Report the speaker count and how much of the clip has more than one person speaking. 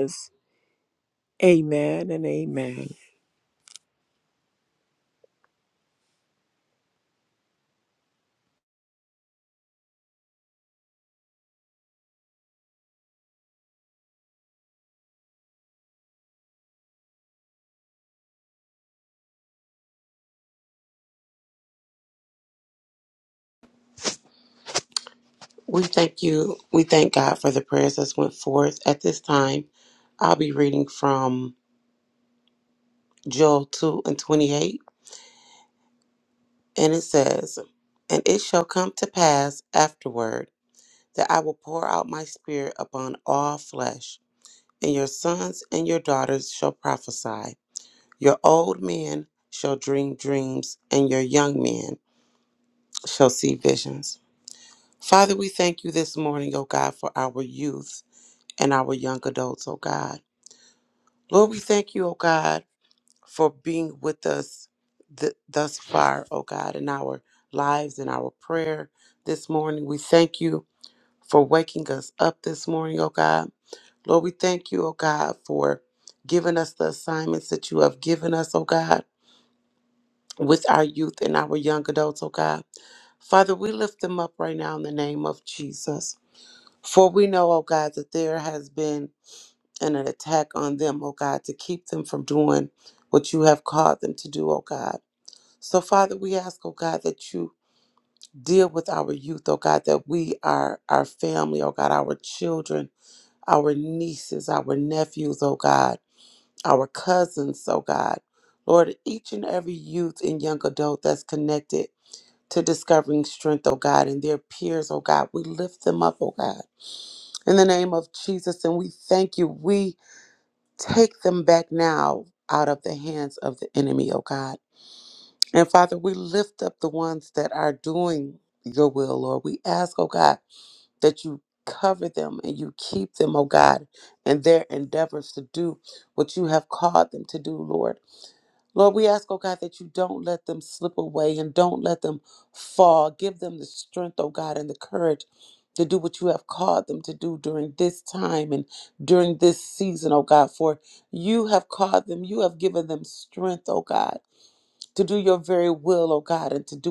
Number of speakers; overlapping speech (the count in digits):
2, no overlap